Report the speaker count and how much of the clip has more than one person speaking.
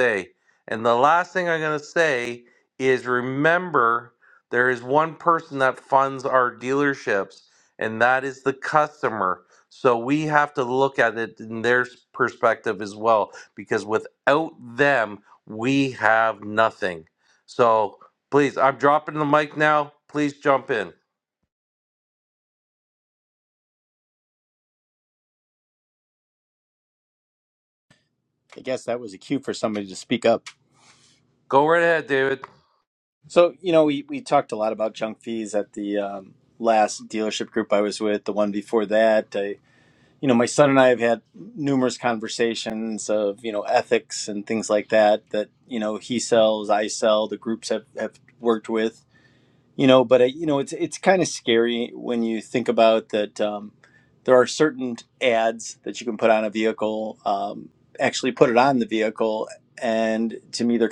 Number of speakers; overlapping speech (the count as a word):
two, no overlap